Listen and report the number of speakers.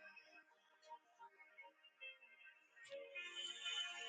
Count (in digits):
0